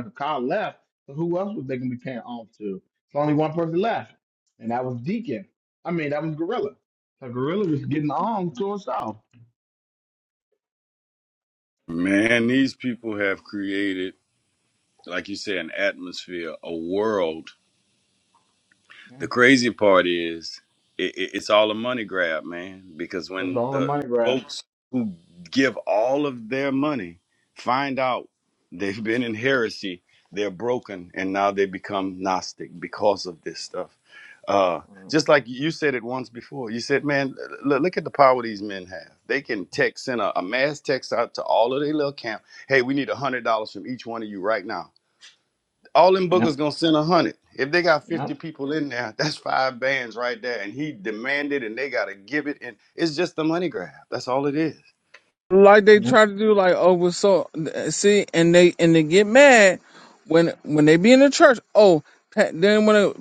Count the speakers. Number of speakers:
three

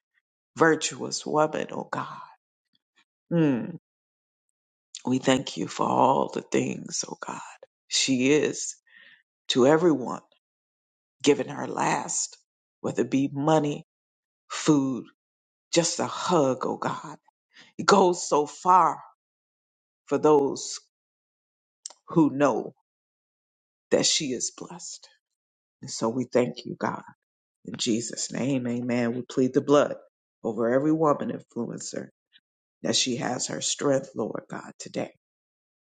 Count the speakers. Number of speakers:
one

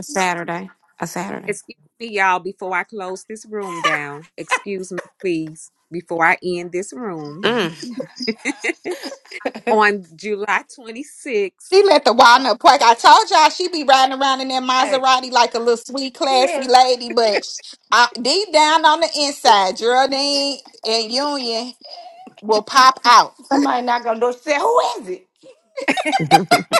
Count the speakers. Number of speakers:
four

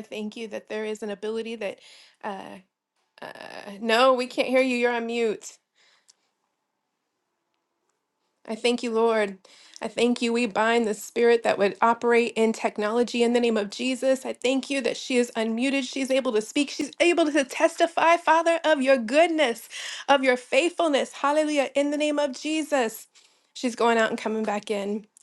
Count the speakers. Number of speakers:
one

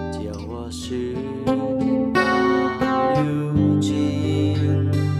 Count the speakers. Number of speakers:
one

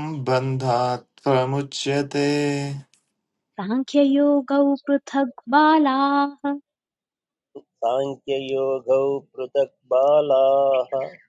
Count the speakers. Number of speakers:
three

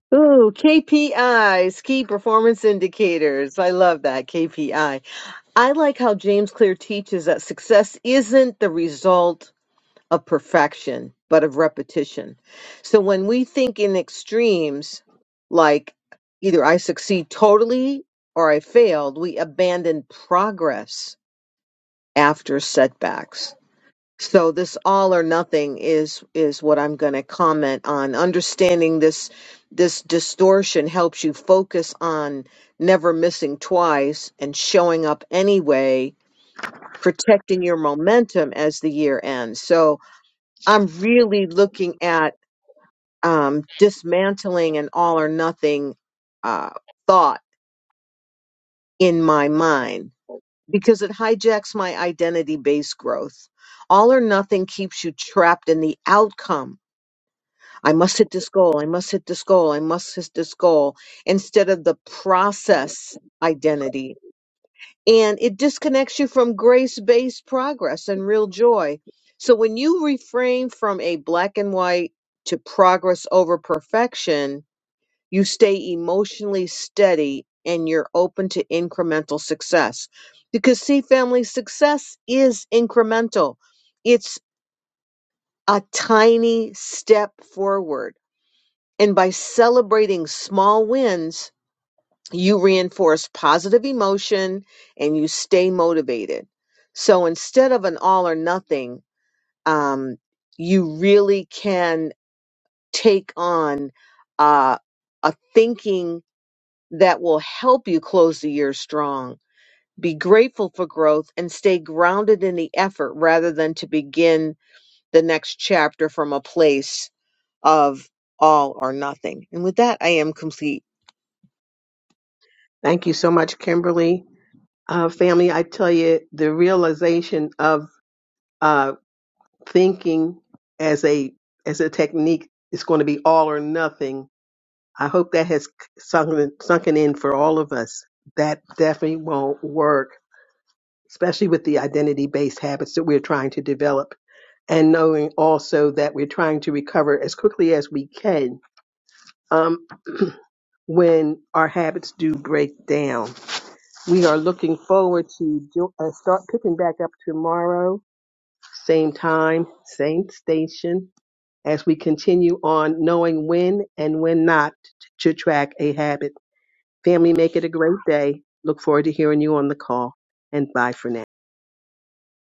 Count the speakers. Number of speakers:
two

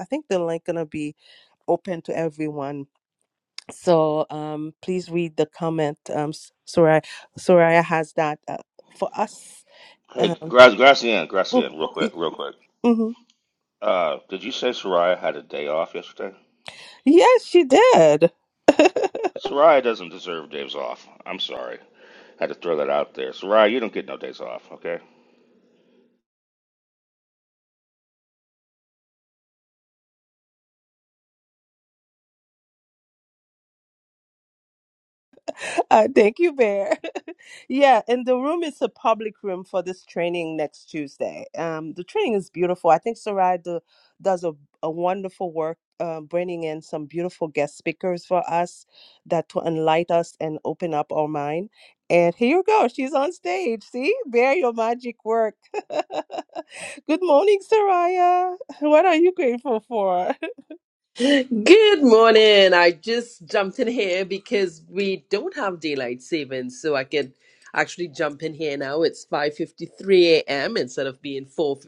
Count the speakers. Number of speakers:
three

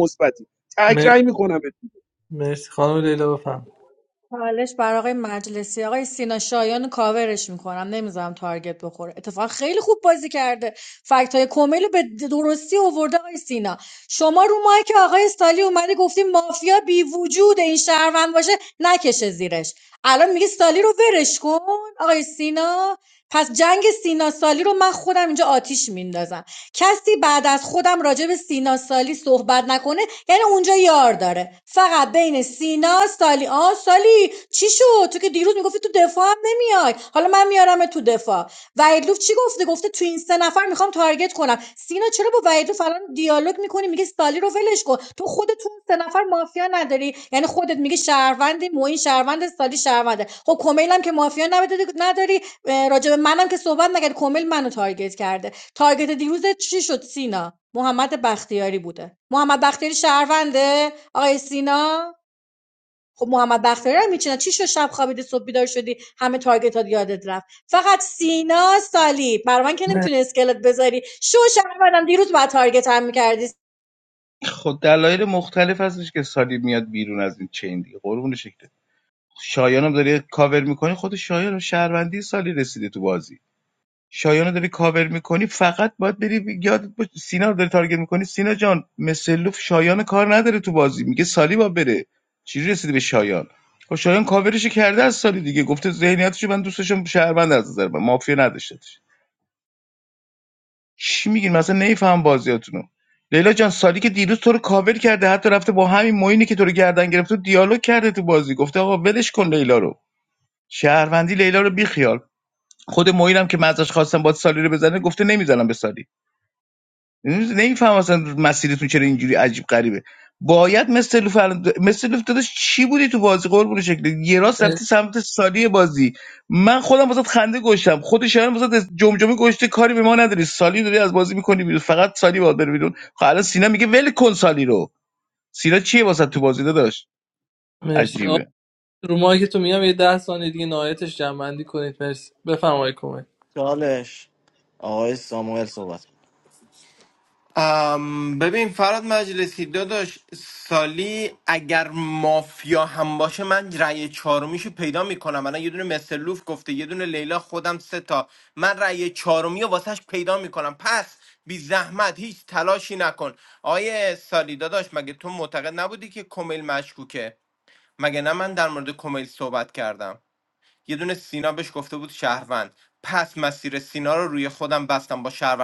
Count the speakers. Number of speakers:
six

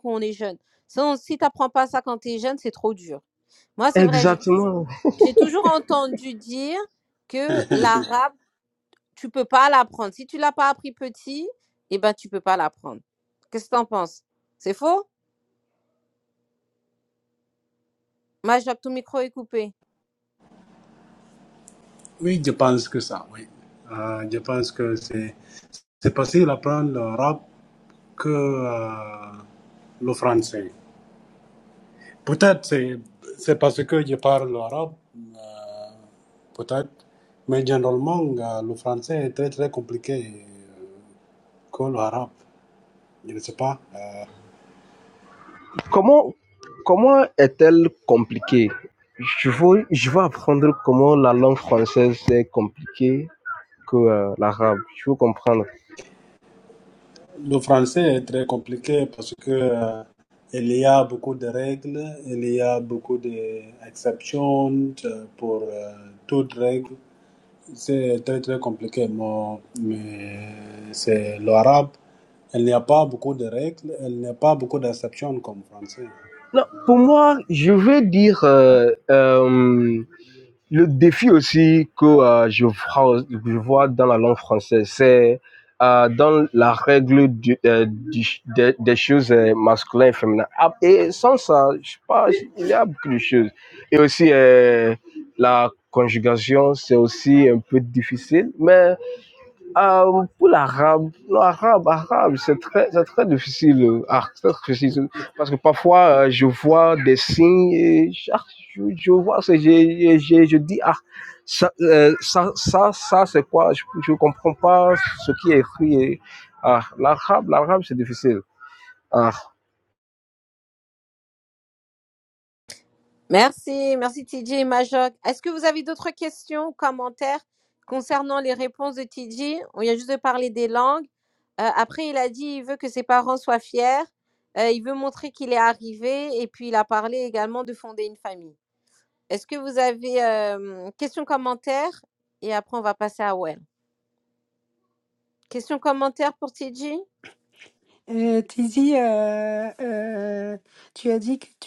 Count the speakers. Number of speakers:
four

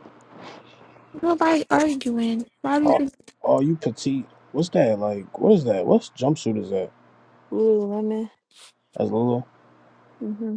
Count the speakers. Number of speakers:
three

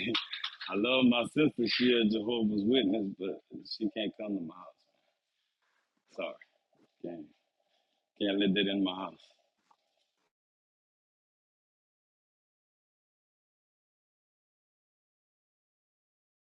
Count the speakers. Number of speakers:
one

